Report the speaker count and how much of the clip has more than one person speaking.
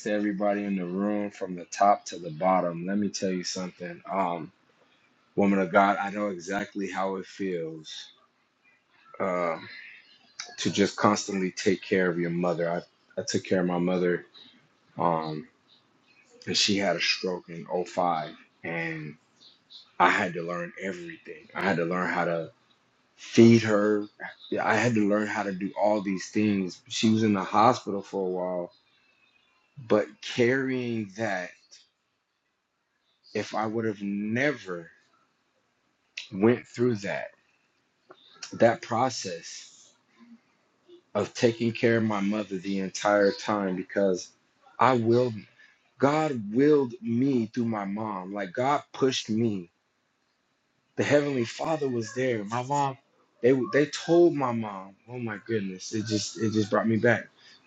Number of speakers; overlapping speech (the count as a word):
one, no overlap